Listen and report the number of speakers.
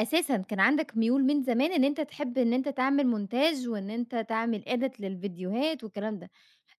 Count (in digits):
1